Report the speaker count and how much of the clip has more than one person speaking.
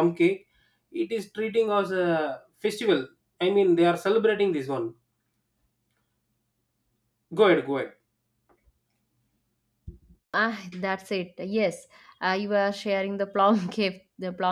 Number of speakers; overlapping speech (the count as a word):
two, no overlap